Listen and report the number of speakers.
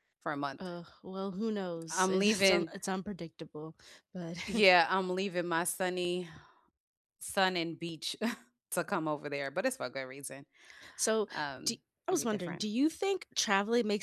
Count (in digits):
2